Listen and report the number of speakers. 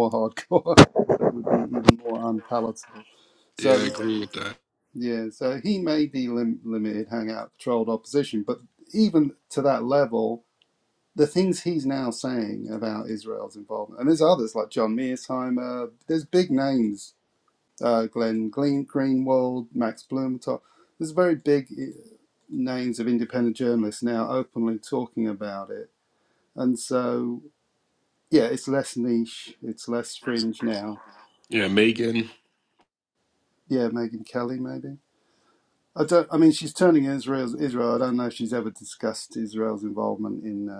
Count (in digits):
2